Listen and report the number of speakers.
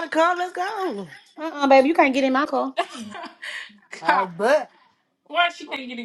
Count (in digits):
3